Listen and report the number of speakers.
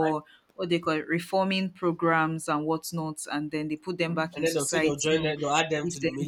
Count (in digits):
2